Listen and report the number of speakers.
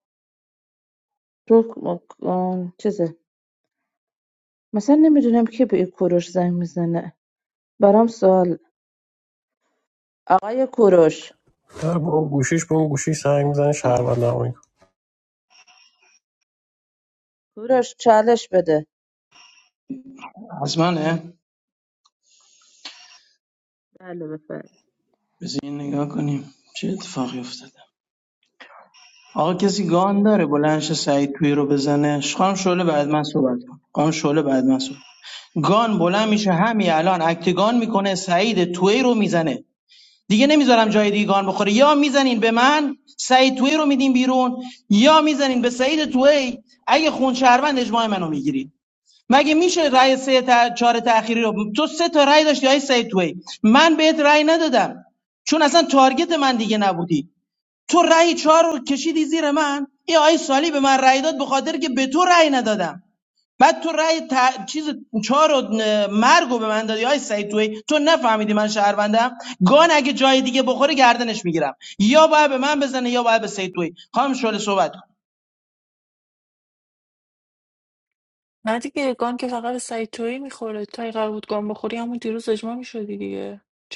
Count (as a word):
four